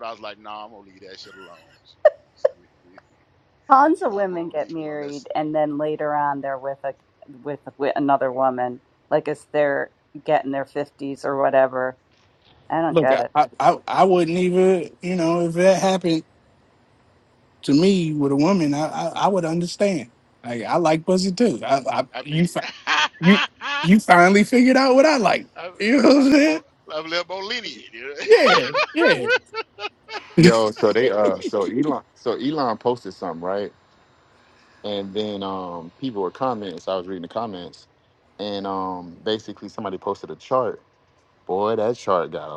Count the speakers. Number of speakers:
4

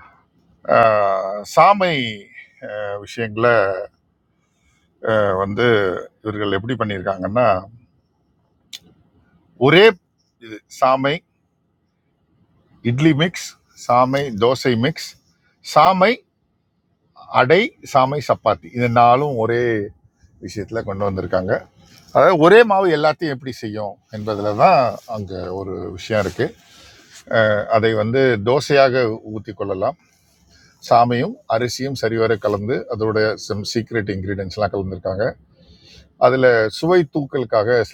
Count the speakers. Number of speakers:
1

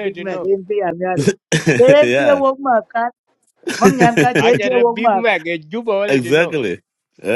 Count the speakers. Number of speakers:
3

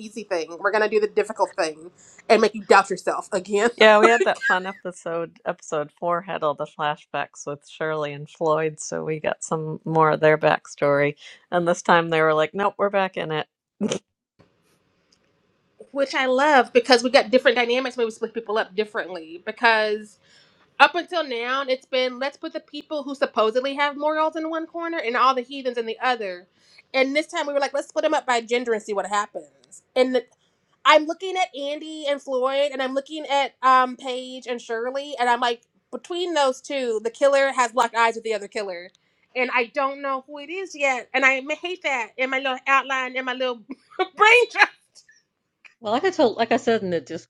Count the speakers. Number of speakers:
3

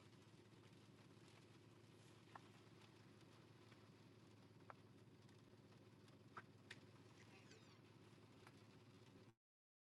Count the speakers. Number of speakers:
0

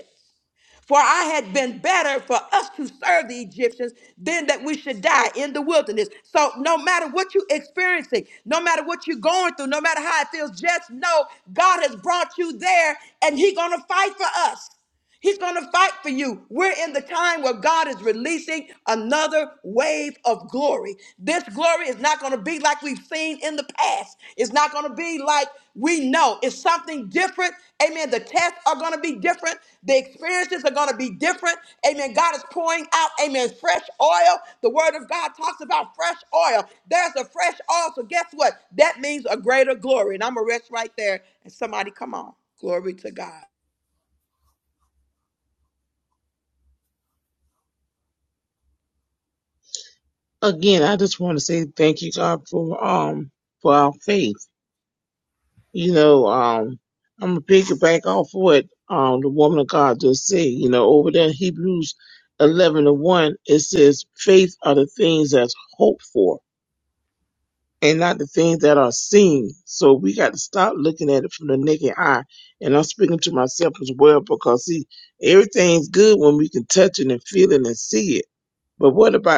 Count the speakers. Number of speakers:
2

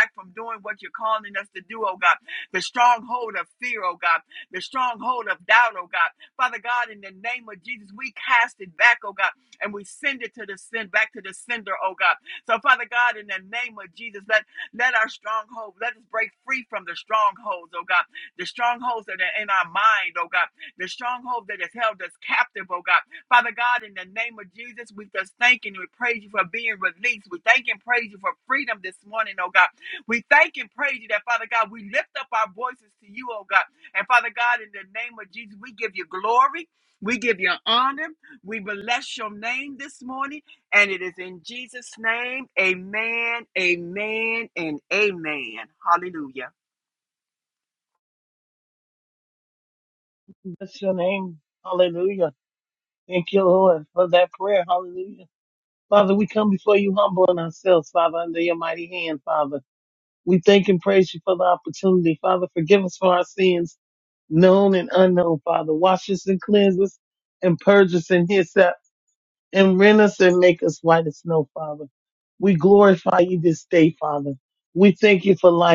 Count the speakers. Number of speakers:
2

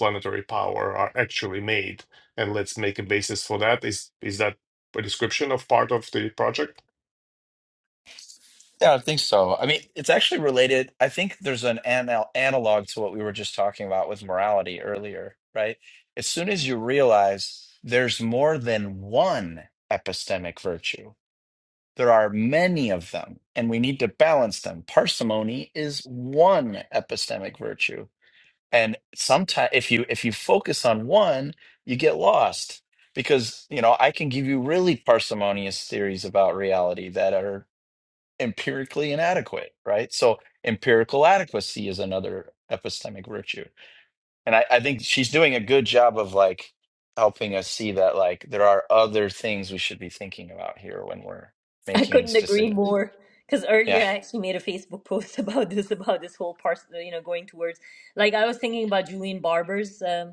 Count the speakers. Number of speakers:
3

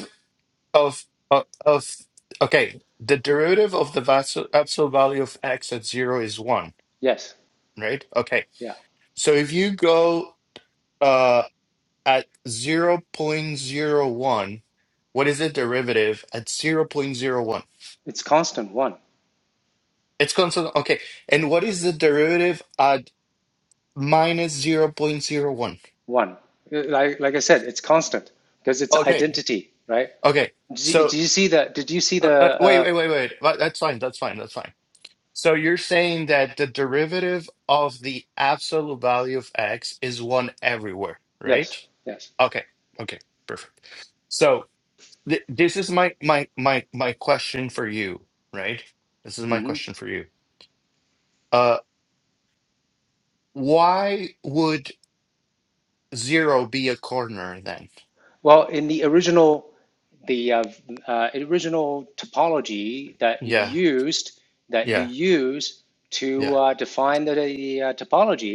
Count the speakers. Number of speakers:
2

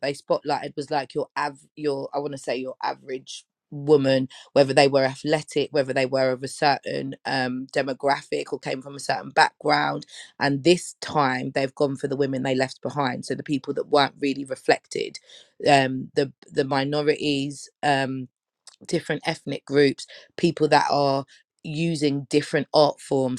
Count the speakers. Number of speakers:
1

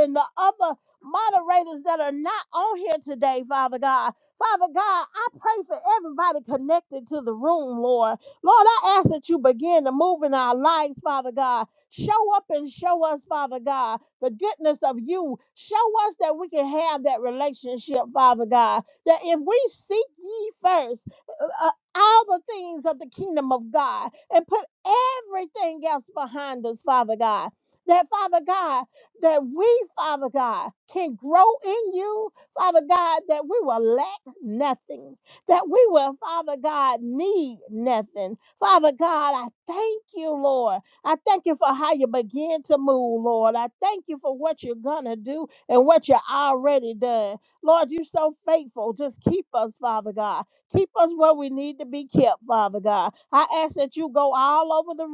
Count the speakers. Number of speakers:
1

